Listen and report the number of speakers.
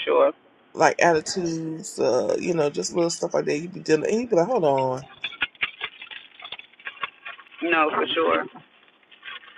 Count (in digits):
2